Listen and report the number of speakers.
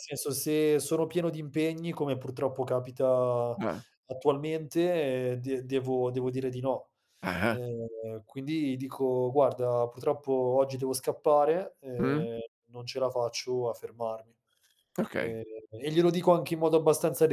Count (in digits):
2